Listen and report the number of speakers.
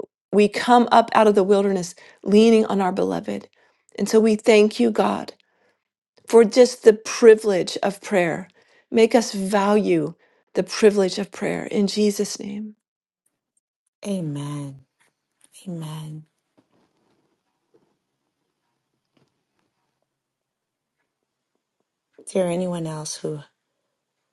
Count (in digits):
2